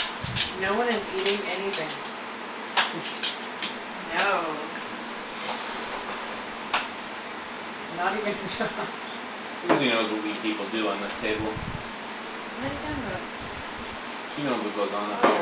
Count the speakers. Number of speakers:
3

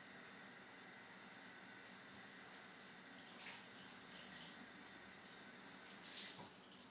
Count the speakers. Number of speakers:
0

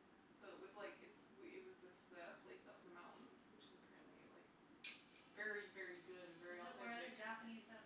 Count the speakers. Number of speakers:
2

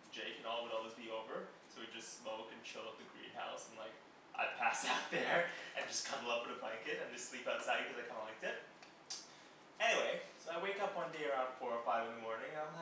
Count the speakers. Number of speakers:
1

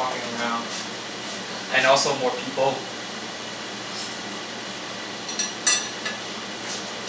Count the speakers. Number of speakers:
1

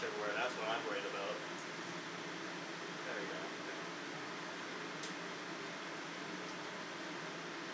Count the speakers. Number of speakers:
1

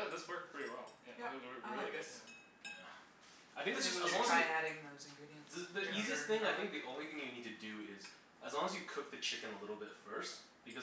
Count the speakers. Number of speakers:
3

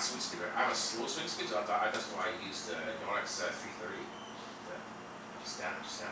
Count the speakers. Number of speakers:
1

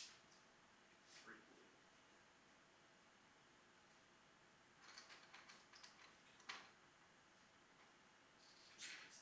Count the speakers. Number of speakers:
1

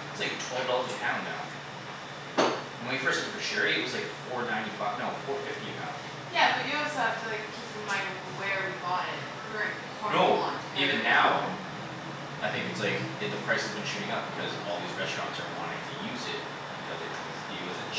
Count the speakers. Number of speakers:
2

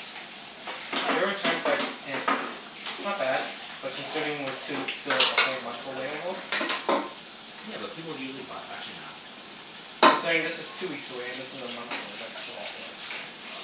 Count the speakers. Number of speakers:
2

